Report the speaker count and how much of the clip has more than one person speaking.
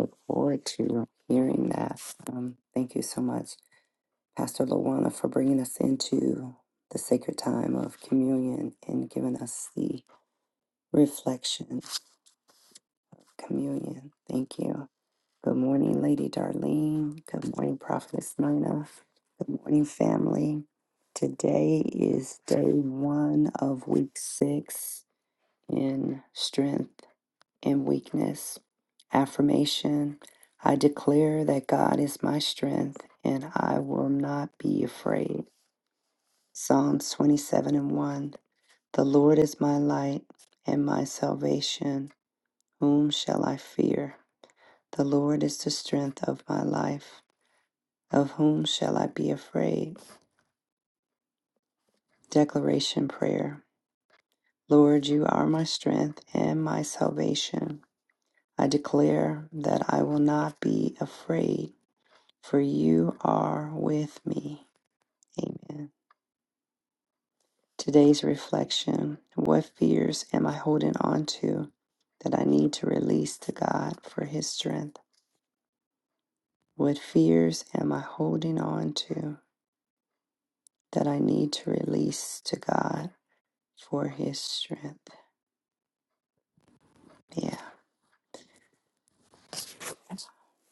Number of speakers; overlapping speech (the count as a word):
one, no overlap